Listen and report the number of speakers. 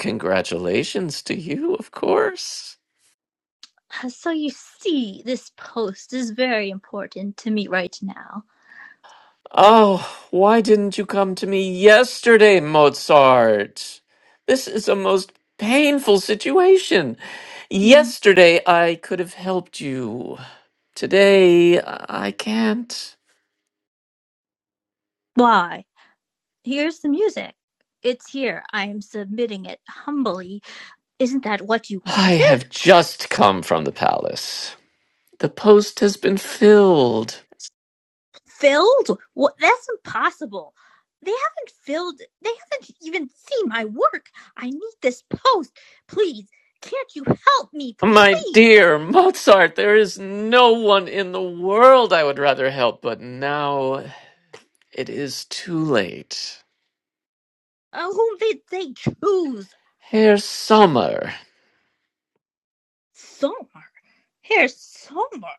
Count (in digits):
2